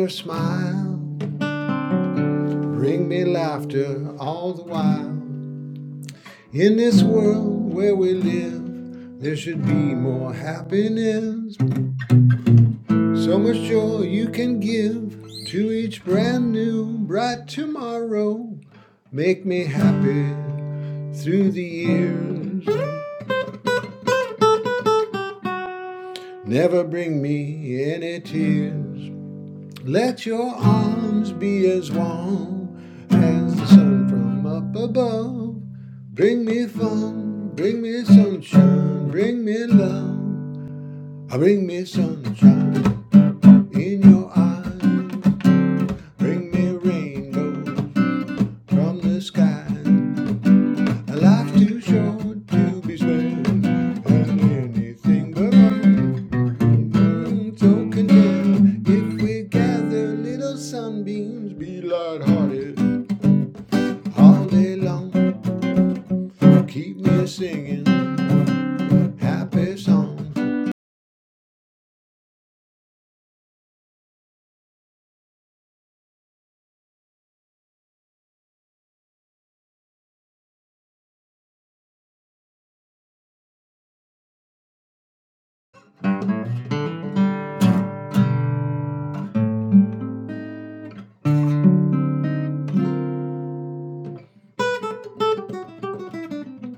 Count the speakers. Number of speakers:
one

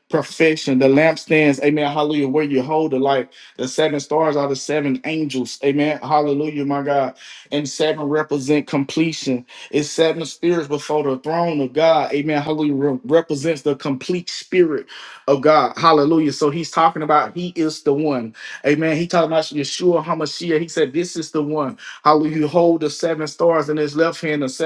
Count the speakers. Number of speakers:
one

